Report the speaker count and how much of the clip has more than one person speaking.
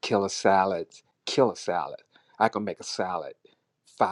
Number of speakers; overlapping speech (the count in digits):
1, no overlap